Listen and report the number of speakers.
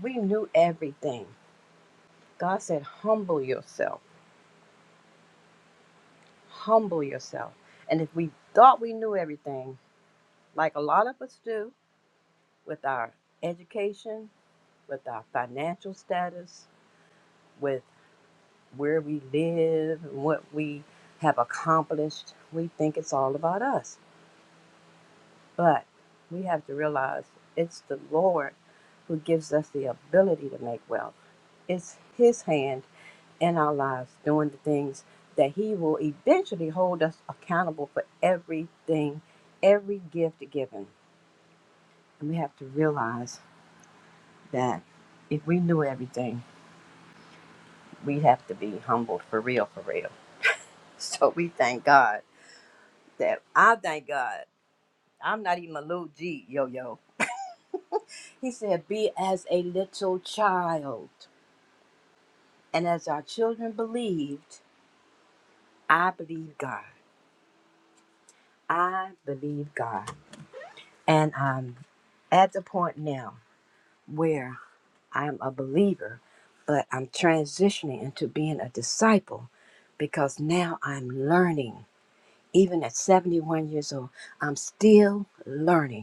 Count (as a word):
one